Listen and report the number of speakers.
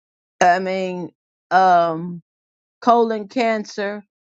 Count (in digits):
1